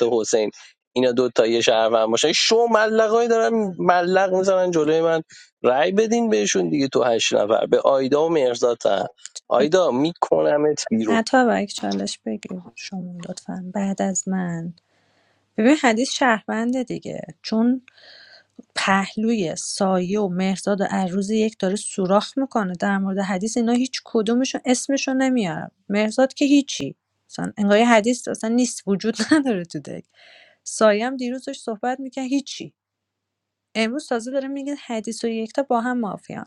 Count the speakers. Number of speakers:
two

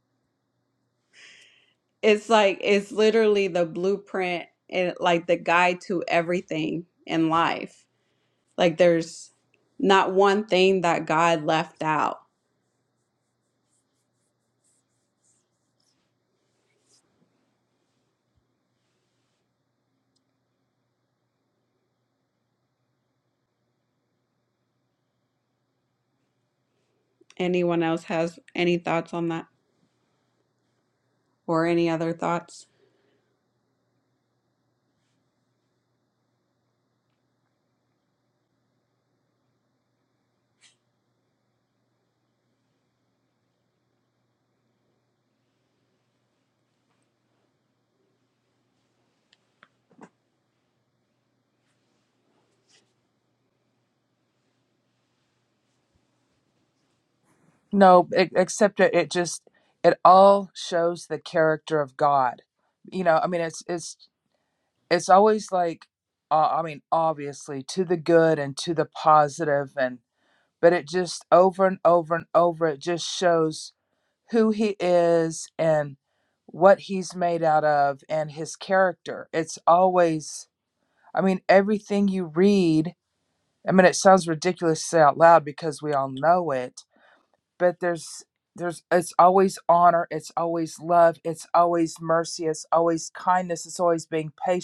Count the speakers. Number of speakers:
two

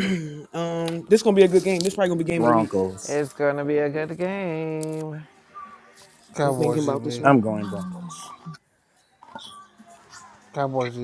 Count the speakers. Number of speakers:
four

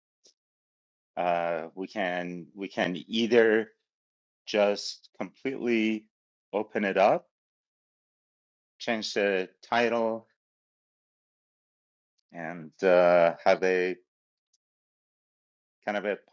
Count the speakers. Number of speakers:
one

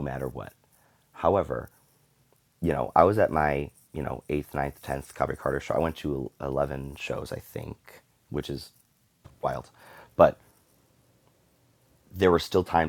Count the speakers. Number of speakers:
one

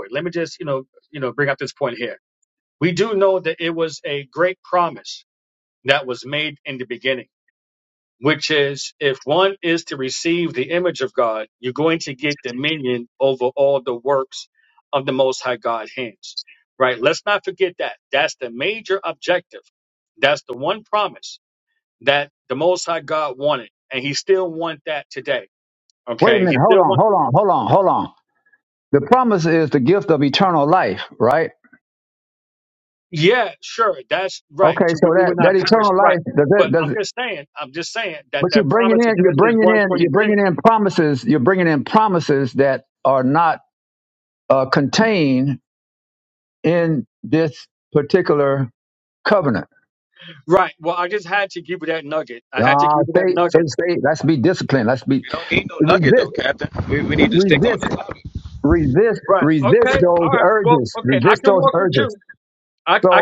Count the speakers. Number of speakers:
three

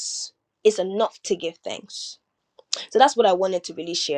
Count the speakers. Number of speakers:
one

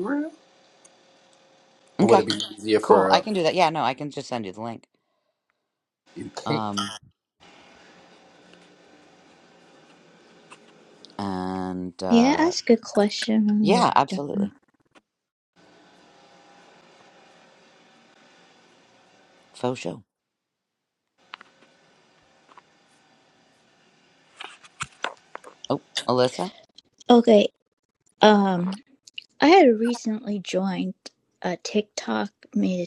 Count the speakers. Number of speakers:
three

